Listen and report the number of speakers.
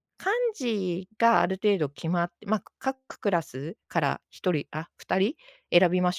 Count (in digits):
1